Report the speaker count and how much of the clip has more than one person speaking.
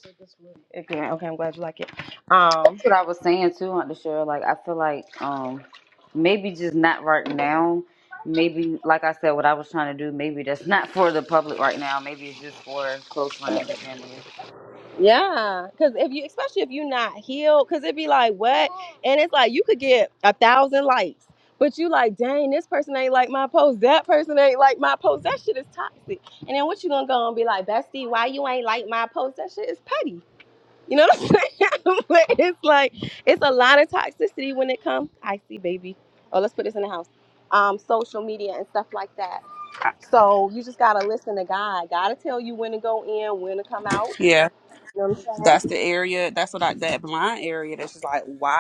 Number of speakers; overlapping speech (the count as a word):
three, about 1%